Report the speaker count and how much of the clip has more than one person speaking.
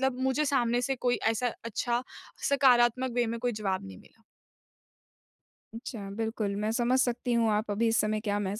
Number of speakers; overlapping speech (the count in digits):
2, no overlap